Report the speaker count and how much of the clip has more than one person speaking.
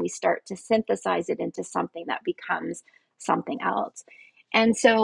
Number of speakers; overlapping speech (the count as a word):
one, no overlap